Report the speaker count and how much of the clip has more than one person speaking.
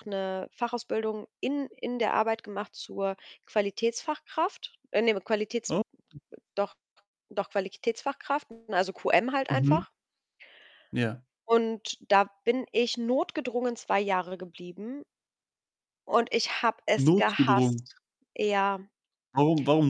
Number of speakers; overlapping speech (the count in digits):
2, about 5%